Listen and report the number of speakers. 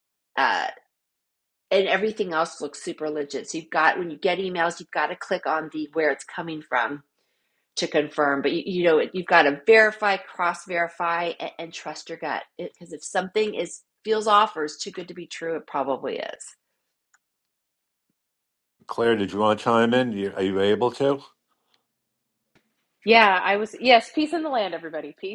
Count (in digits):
3